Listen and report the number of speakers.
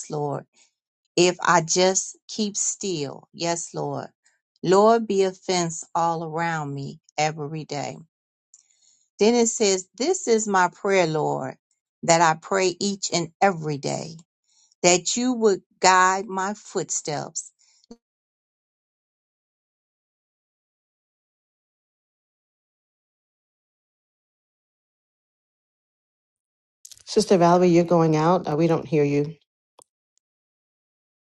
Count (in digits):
2